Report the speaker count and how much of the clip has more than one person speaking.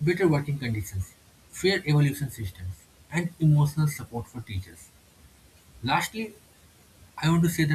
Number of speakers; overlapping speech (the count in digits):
1, no overlap